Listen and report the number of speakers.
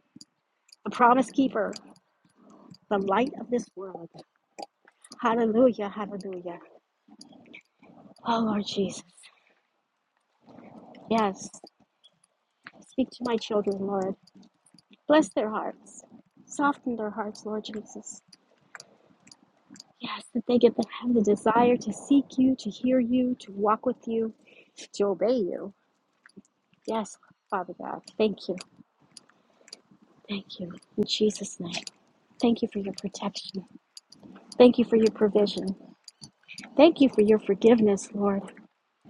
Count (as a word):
one